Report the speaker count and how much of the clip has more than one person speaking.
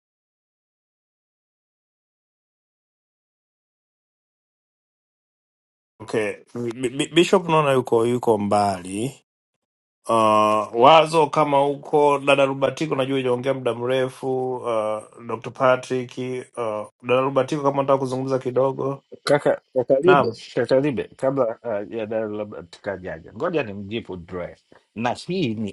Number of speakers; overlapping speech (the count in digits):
2, about 1%